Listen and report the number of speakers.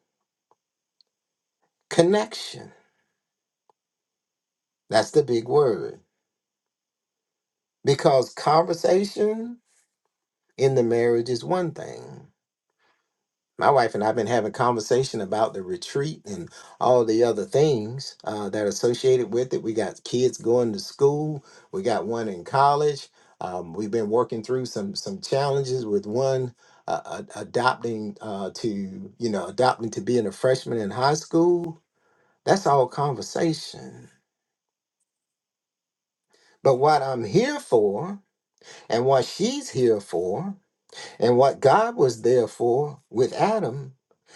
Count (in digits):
1